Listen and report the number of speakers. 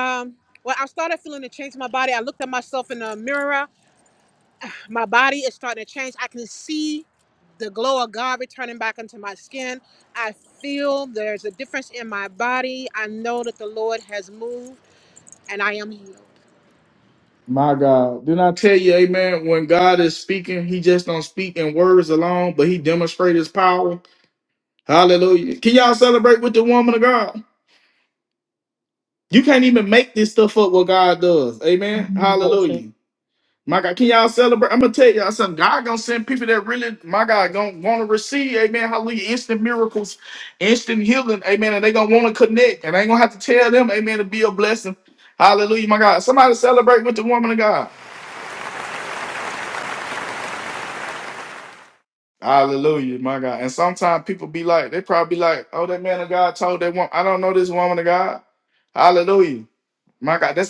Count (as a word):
two